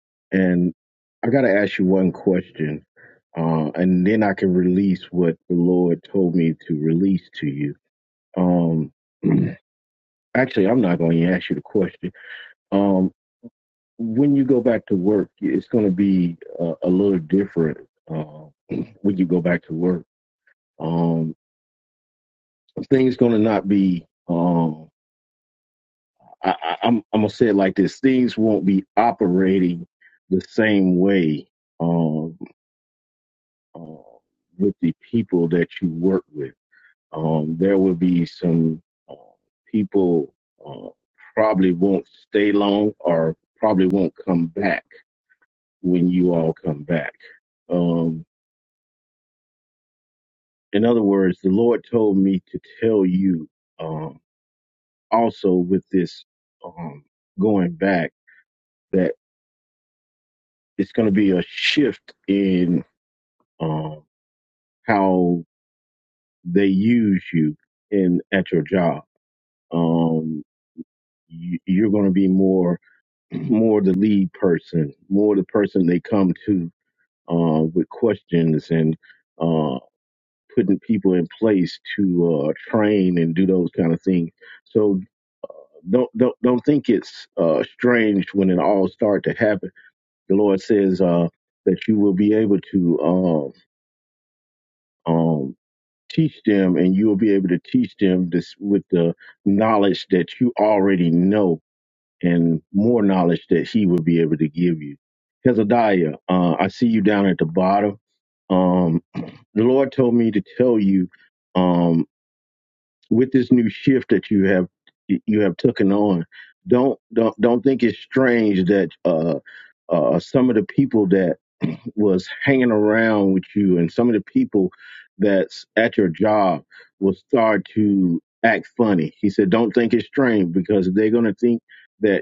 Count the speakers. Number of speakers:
1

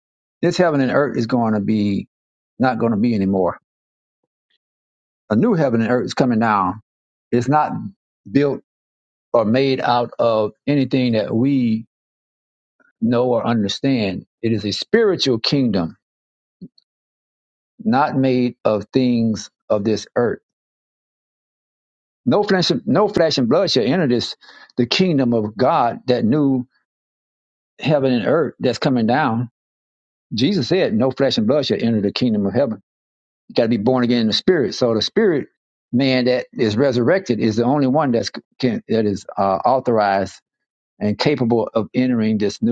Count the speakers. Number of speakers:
1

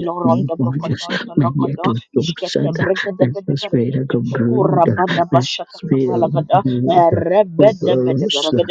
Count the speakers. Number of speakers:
2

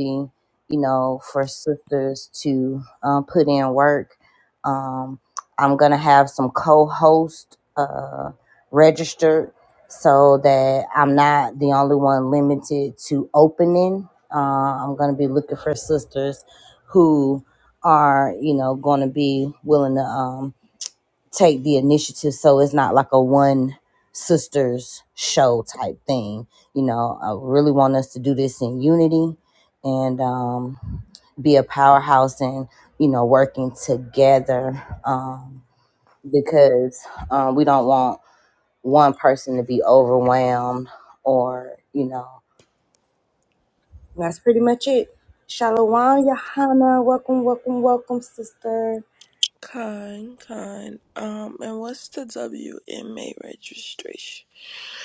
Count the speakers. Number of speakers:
2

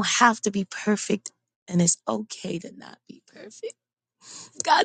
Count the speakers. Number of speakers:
1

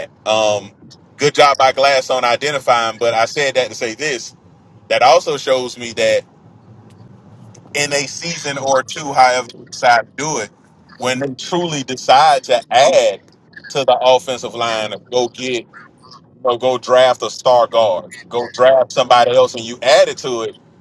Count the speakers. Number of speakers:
1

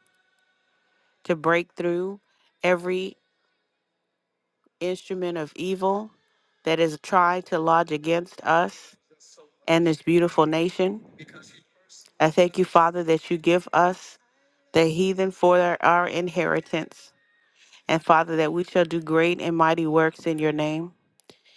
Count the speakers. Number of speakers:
1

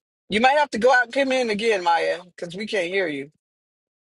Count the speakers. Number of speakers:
1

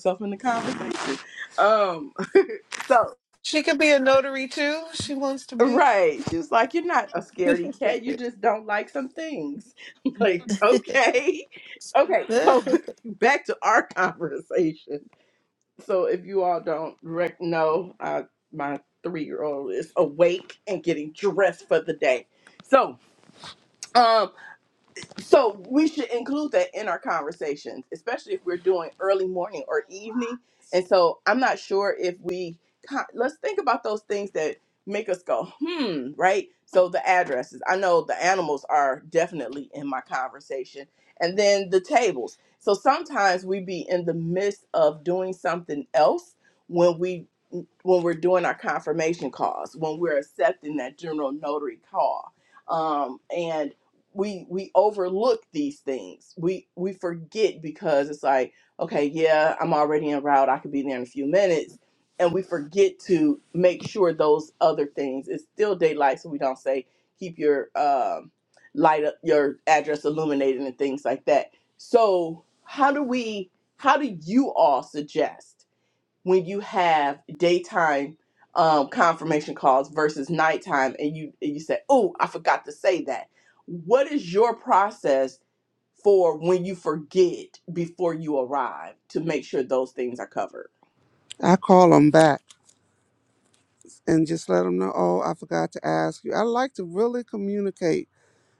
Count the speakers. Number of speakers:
3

